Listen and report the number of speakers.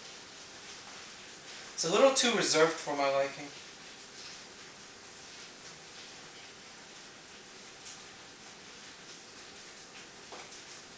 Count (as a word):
one